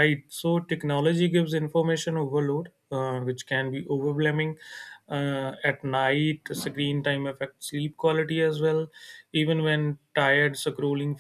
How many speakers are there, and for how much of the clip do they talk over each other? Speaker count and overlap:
1, no overlap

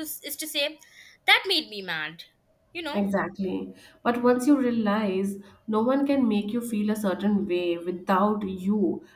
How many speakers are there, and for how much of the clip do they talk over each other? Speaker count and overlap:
2, about 1%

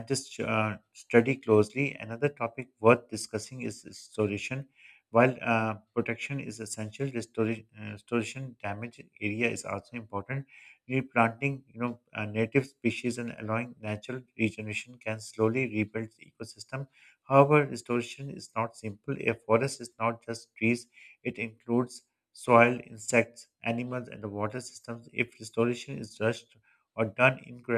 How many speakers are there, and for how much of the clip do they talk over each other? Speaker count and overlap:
1, no overlap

